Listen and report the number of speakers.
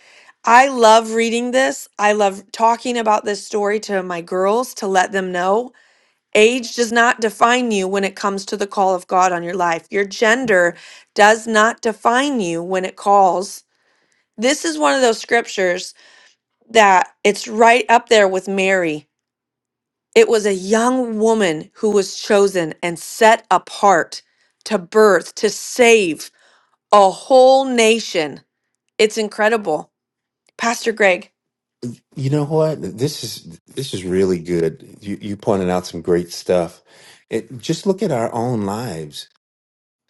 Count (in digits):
2